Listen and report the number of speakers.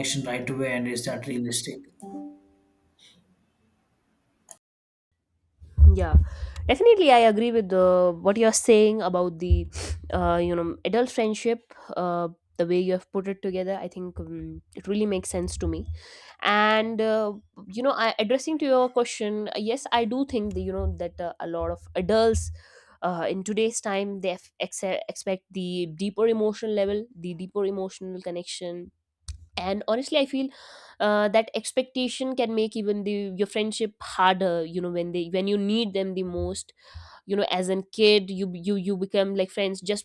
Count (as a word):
two